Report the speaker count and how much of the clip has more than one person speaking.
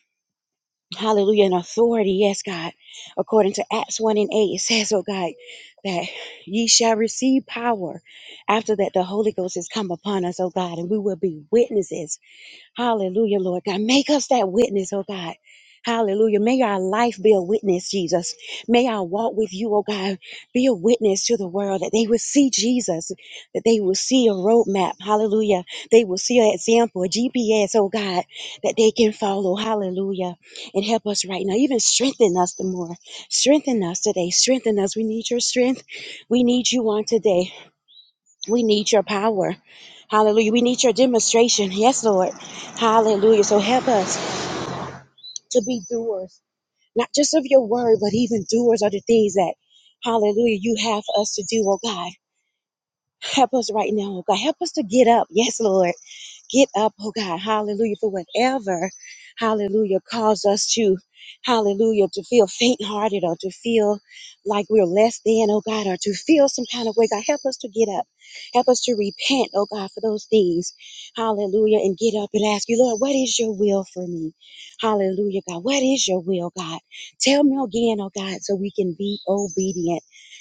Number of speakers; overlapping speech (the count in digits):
1, no overlap